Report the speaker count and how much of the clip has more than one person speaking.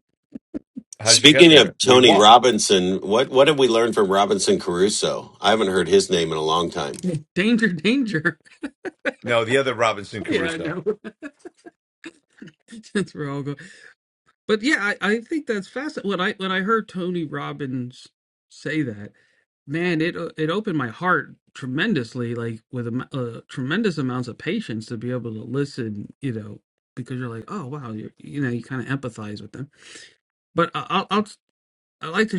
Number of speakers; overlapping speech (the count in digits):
3, about 5%